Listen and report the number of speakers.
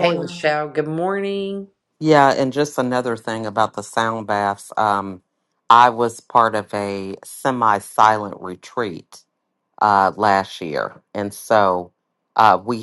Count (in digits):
2